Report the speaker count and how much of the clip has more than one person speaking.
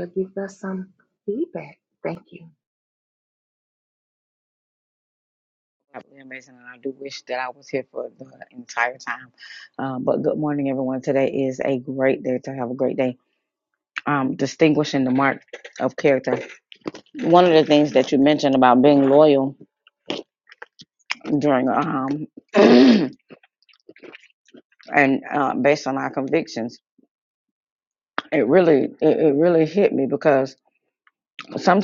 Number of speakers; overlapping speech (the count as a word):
two, no overlap